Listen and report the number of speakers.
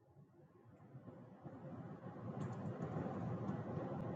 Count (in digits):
0